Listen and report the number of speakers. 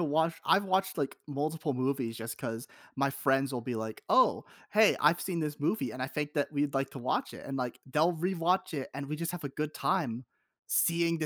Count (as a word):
one